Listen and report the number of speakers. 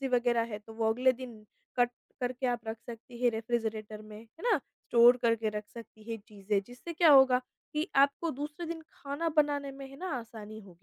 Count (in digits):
1